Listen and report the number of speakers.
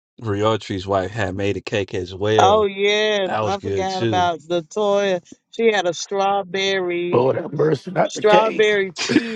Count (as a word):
three